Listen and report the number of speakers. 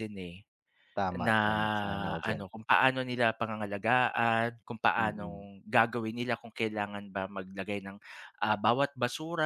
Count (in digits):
2